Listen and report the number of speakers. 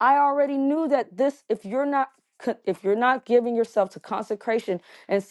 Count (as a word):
one